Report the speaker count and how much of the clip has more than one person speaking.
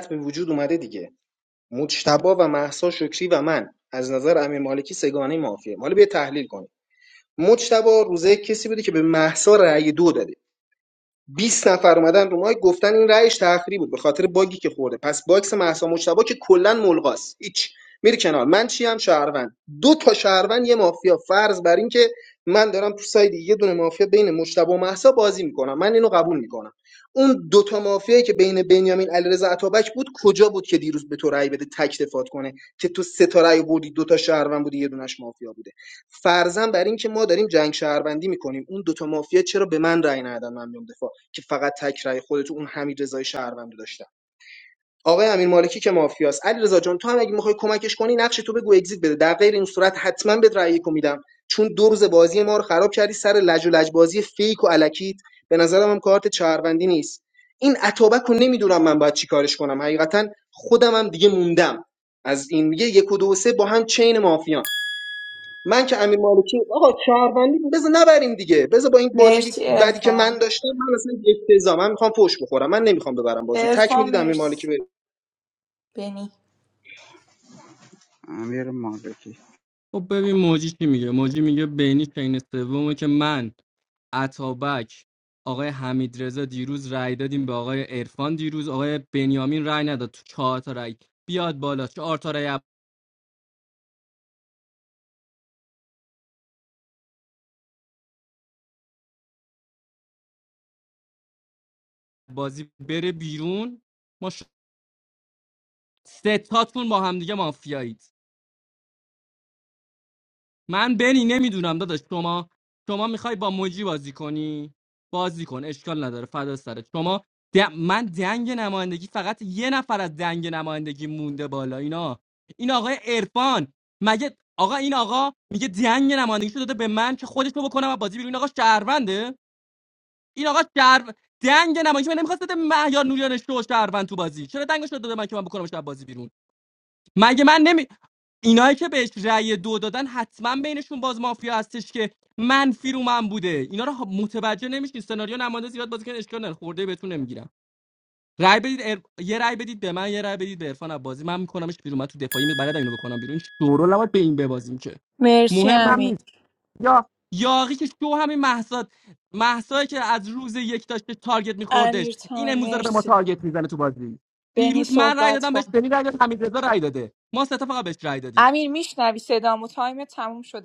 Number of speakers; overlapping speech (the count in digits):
4, about 3%